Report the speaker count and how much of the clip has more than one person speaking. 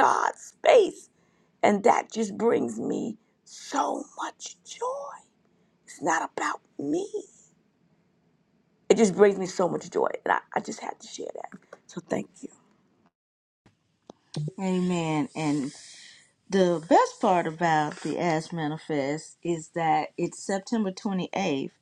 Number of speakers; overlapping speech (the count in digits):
2, no overlap